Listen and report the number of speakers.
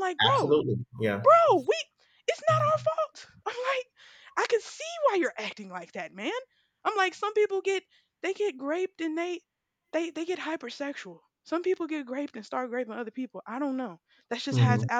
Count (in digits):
2